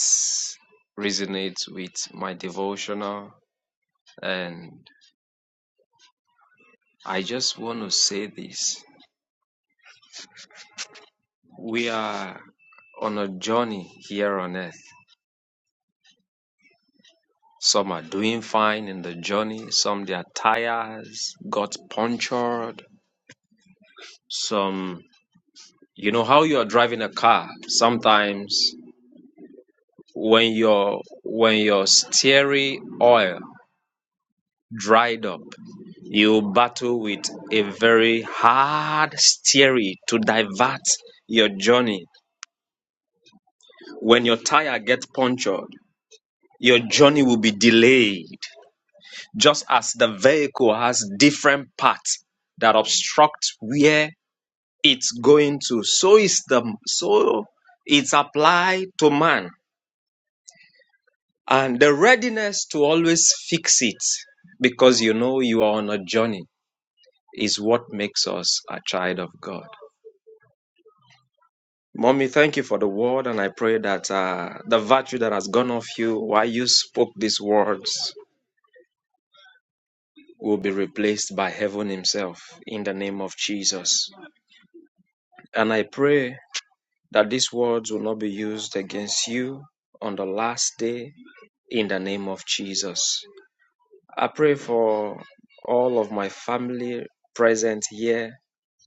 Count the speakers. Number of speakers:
one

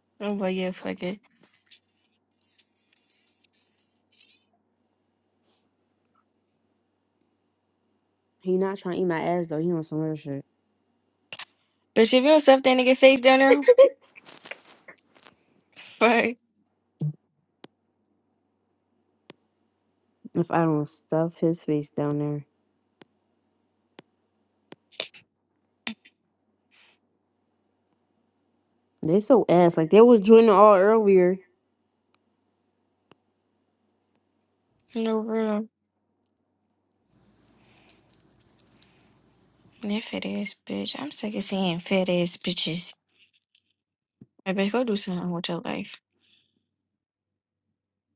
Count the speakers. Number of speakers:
two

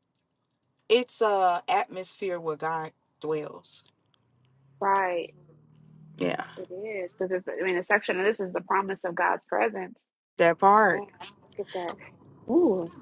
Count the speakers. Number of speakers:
two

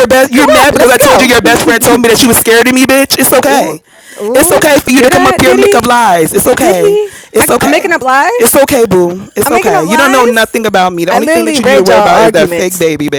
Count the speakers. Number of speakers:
two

